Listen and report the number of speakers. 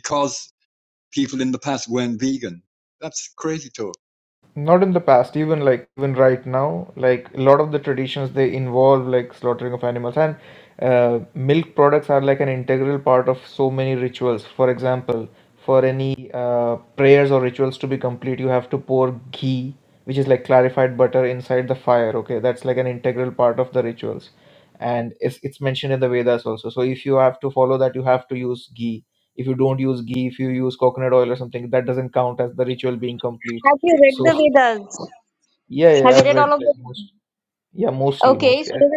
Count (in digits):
3